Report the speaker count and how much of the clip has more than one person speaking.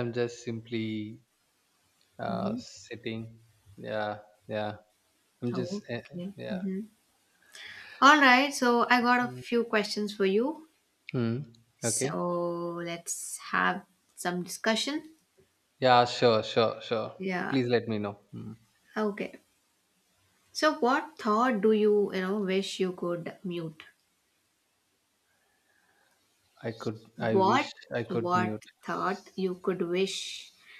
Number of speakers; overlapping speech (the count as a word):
two, about 8%